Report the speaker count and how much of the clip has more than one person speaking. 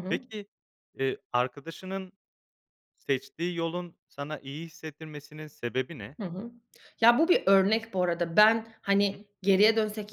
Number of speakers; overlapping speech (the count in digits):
2, about 2%